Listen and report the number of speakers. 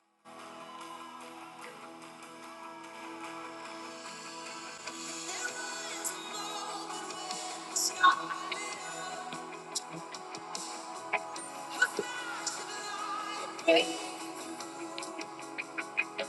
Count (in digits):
0